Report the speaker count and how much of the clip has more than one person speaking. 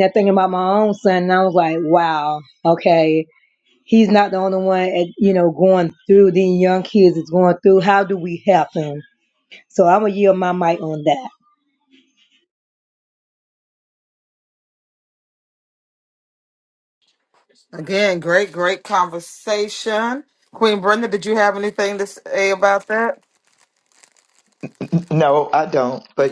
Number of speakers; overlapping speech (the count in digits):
3, no overlap